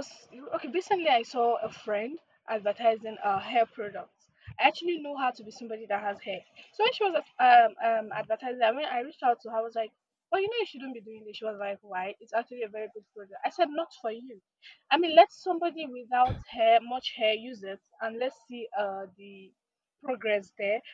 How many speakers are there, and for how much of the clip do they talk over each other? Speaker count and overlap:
1, no overlap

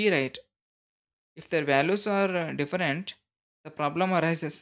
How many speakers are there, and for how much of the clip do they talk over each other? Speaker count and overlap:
1, no overlap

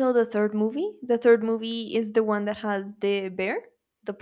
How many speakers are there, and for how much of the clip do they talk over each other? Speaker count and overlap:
1, no overlap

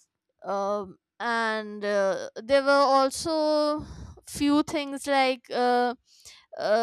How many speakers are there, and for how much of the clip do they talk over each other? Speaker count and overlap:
1, no overlap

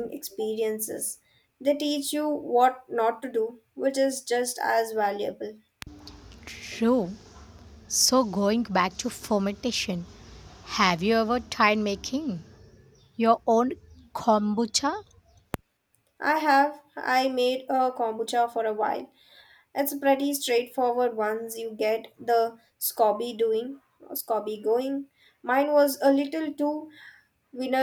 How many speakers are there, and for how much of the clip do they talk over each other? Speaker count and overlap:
2, no overlap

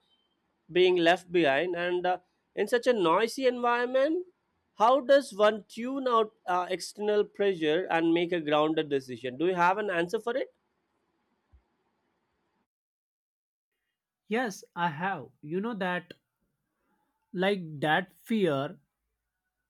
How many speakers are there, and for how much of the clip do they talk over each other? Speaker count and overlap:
2, no overlap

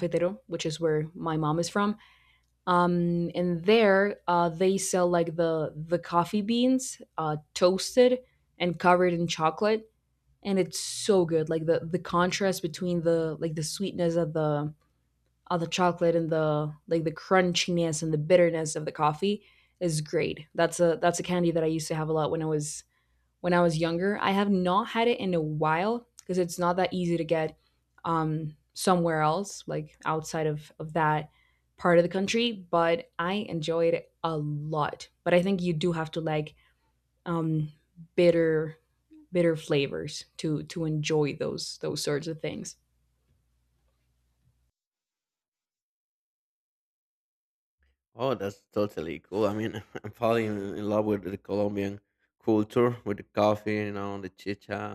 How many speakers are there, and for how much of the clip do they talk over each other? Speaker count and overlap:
2, no overlap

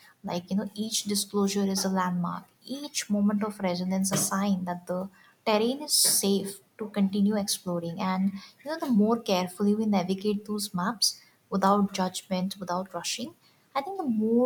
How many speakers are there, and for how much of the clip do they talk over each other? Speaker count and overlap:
1, no overlap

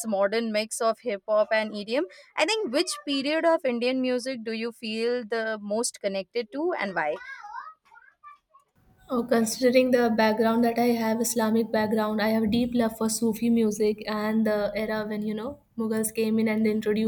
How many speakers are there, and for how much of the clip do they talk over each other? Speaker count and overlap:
2, no overlap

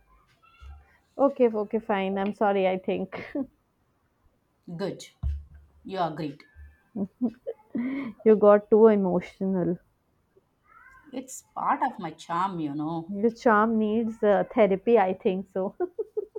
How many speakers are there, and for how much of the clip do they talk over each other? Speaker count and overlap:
2, no overlap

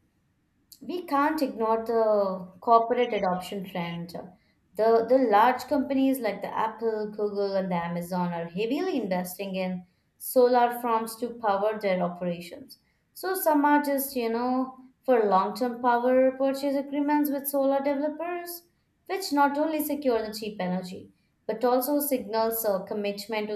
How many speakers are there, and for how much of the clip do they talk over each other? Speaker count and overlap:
1, no overlap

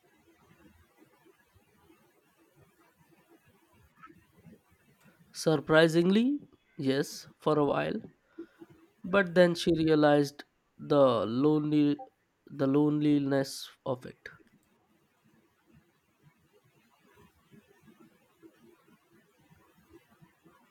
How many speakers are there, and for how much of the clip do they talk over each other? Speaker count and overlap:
1, no overlap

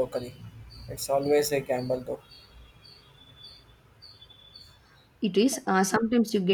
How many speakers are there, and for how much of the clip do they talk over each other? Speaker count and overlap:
2, no overlap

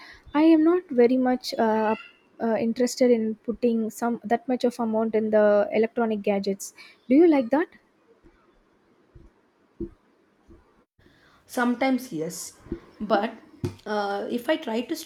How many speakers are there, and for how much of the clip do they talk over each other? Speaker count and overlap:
2, no overlap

